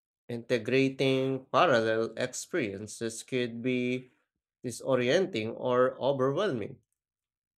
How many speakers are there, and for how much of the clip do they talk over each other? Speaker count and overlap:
1, no overlap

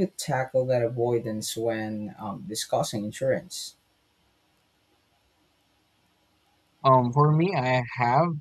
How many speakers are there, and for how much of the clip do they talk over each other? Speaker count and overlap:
2, no overlap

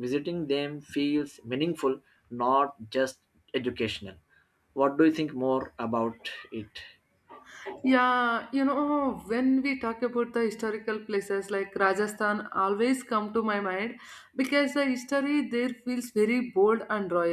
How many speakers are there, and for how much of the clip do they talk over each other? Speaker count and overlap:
2, no overlap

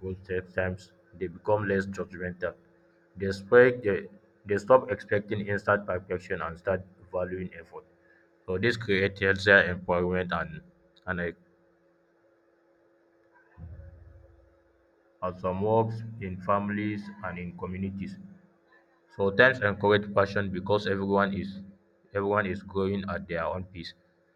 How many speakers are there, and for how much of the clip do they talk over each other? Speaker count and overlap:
1, no overlap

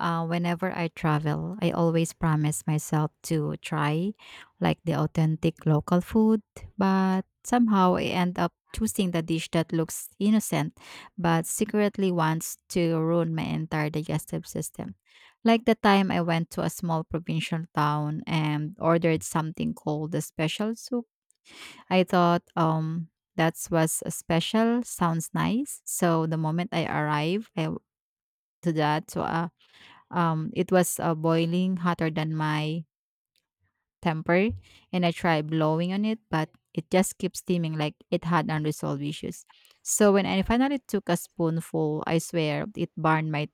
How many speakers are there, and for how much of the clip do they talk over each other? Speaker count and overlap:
1, no overlap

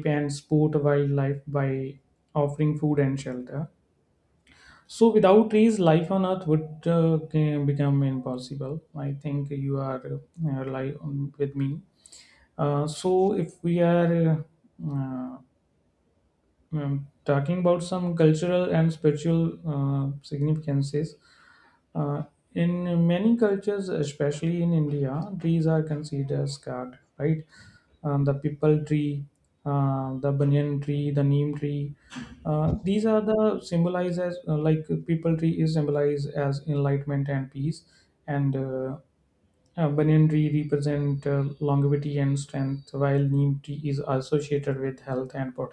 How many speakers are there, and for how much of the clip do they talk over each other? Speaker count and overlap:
1, no overlap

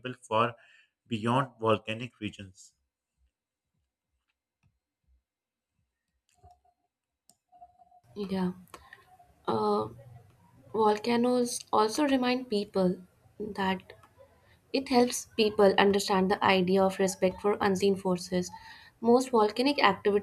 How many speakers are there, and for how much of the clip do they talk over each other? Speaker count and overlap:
2, no overlap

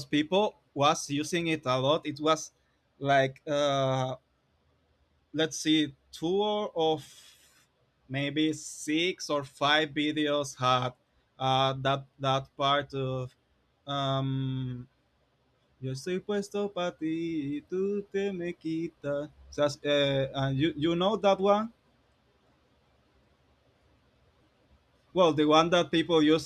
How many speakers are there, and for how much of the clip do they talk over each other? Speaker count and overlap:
1, no overlap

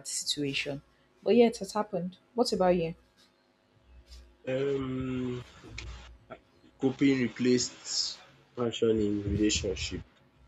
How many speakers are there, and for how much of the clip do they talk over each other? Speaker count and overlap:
2, no overlap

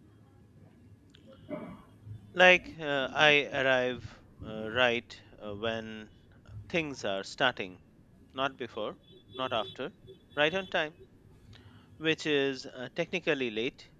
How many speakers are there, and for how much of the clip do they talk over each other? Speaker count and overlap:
1, no overlap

